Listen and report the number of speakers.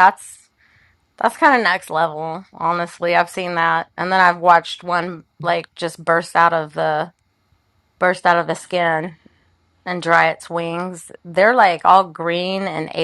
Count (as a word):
one